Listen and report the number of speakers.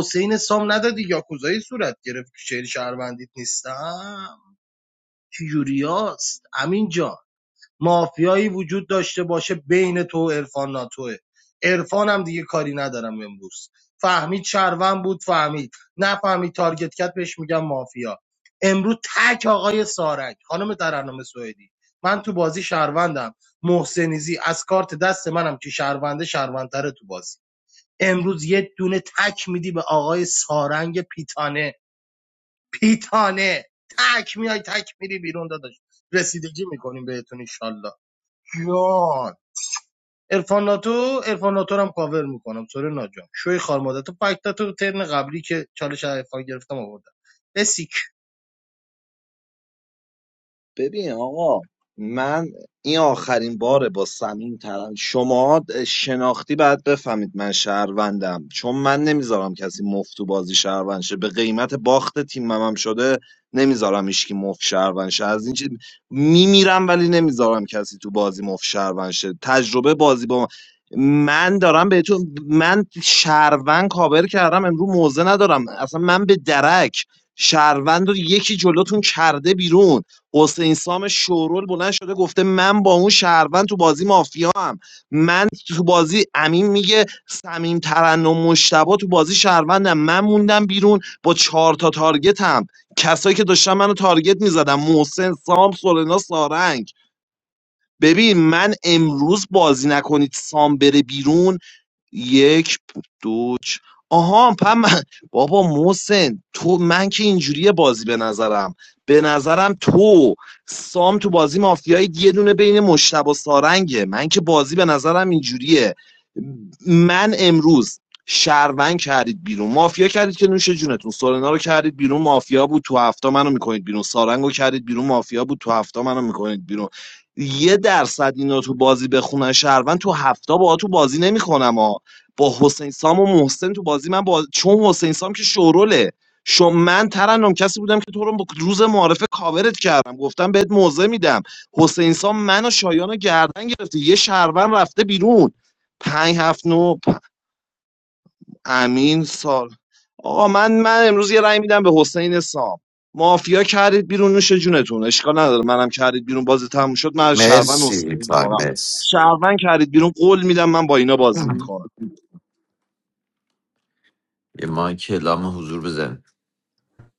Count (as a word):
three